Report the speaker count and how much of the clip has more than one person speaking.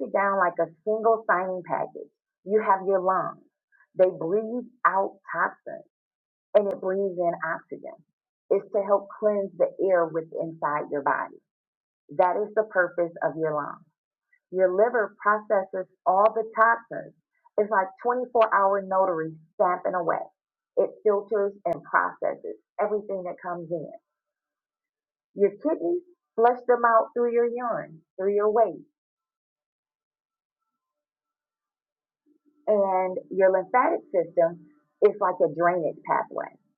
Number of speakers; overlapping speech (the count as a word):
one, no overlap